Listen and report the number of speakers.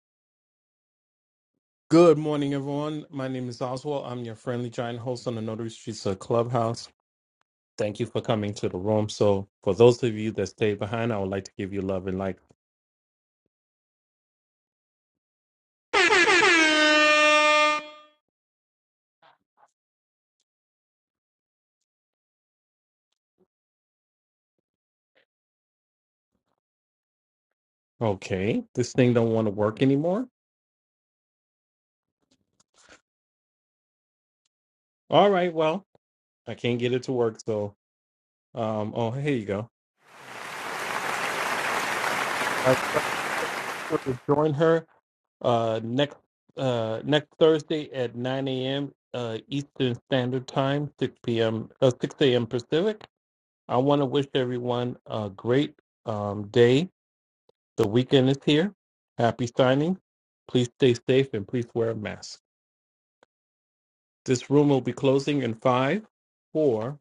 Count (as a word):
one